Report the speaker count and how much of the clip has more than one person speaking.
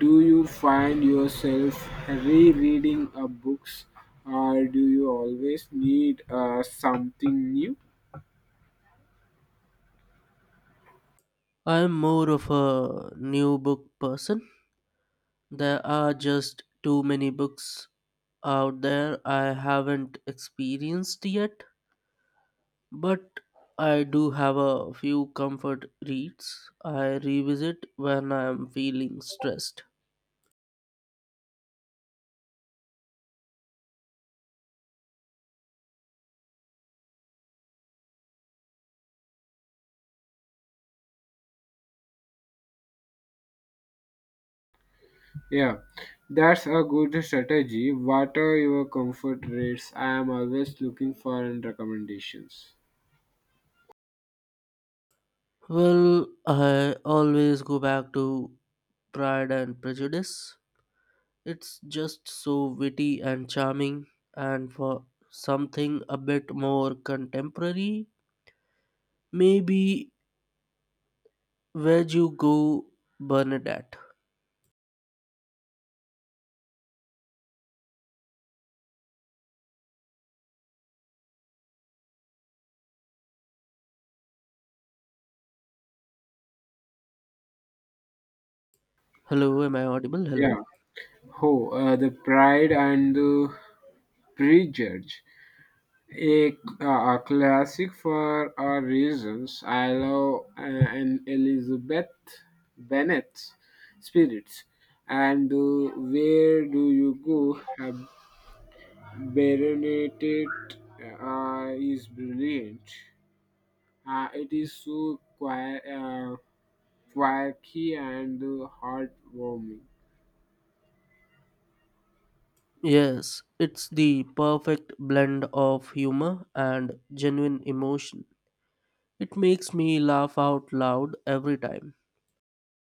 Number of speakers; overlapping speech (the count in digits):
2, under 1%